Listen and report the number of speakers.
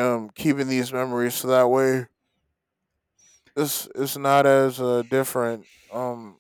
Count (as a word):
one